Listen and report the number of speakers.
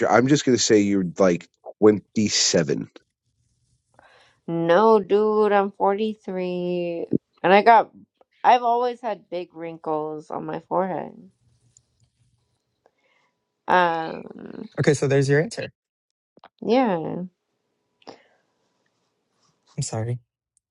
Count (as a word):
three